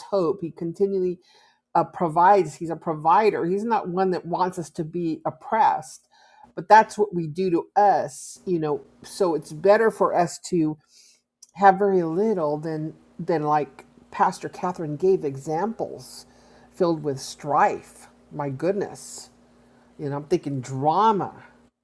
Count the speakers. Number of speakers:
one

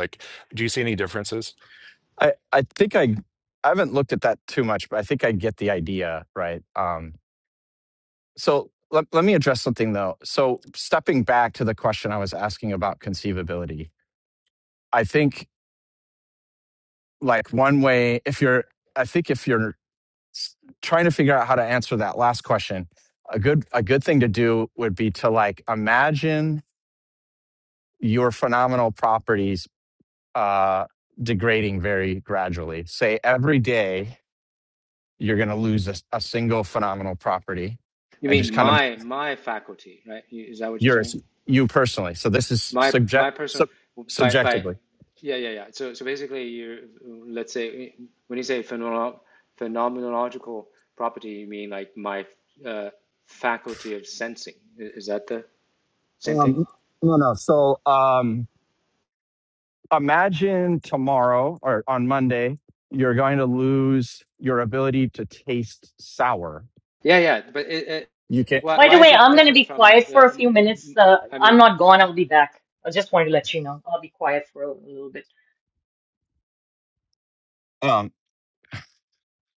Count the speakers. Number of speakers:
four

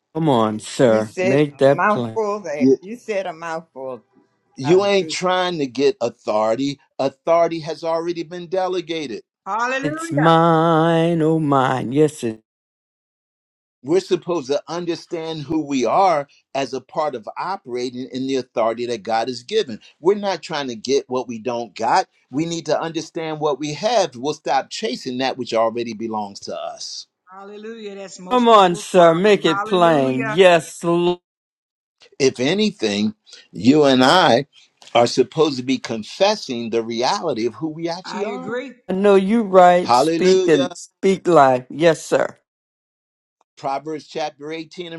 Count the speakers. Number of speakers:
four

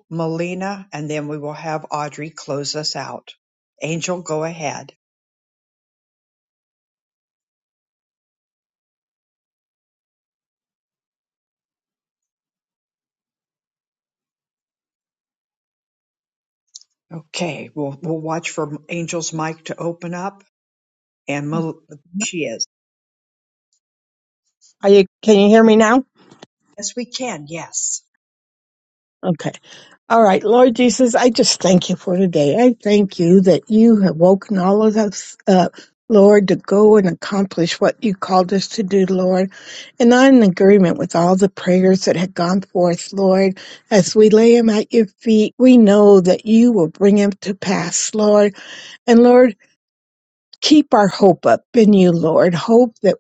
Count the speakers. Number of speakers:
two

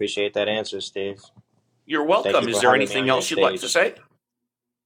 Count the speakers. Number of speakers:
two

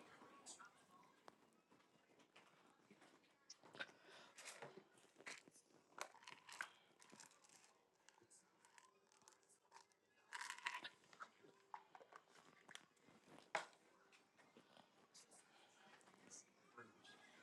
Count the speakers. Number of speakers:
zero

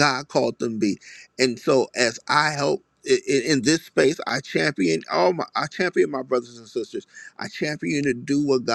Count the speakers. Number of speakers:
one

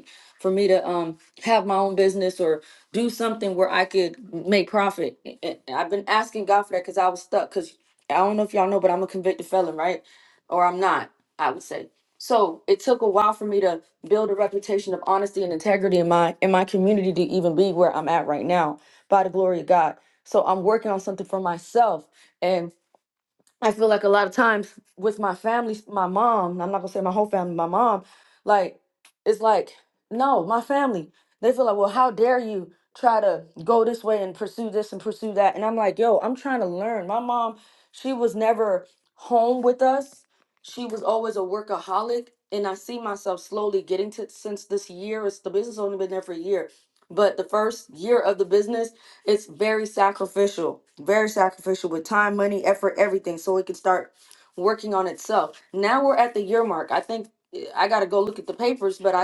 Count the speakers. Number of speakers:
one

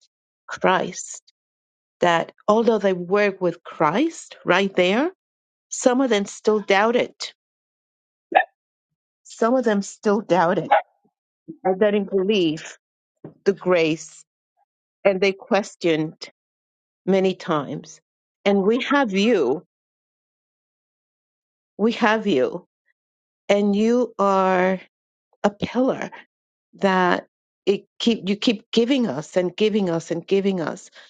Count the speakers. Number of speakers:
one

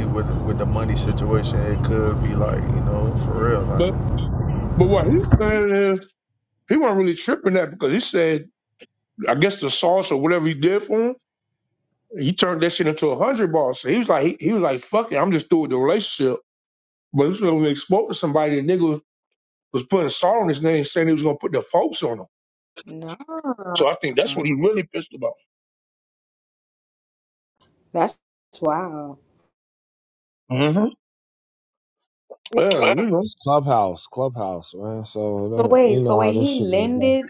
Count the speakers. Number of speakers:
four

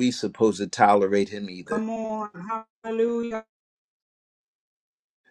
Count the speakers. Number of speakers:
two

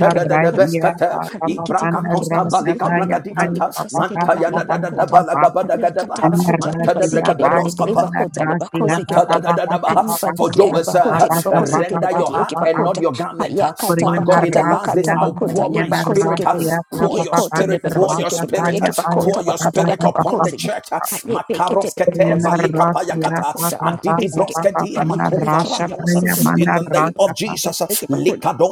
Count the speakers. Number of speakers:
three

